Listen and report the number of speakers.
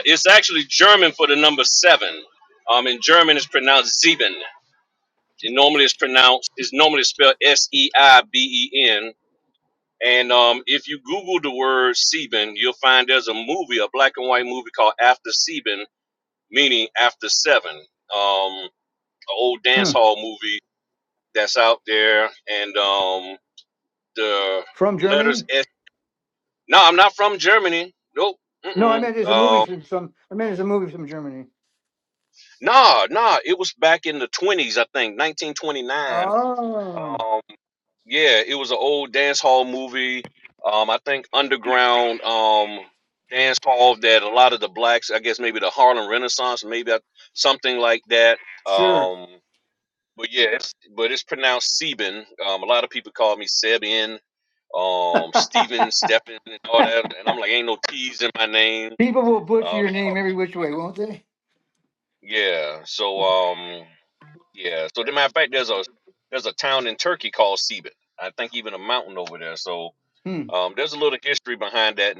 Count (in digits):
2